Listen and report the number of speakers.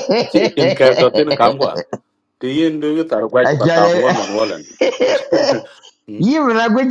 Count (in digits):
2